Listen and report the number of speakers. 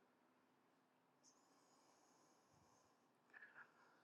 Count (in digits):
0